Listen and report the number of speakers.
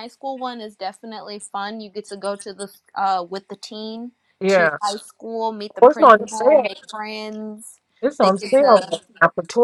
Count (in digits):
2